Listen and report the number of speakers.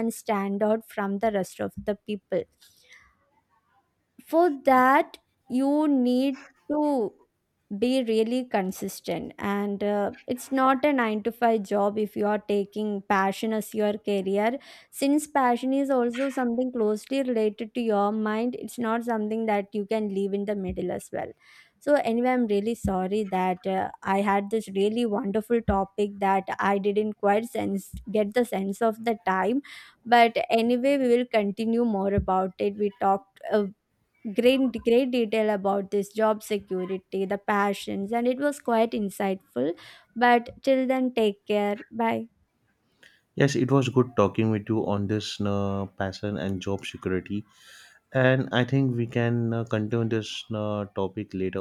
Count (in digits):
2